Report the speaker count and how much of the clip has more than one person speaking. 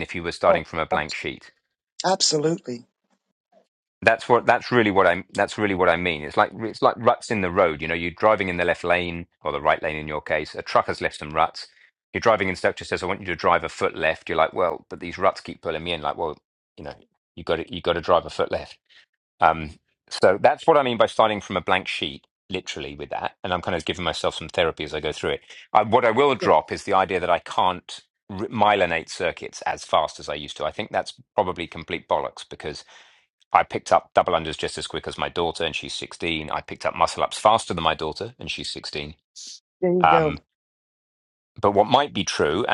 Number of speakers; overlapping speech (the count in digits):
2, about 2%